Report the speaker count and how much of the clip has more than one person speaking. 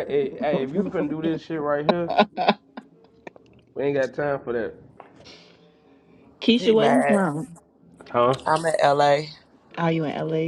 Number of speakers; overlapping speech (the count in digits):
3, about 6%